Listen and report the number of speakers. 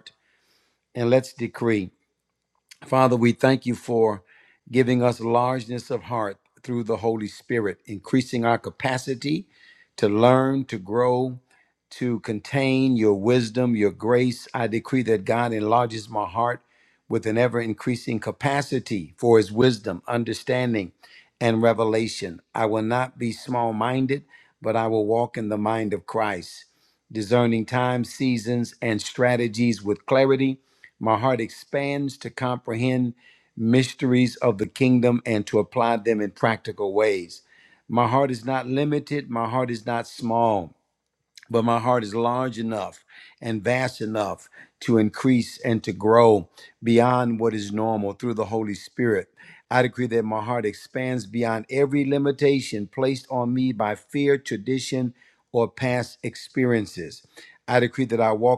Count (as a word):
one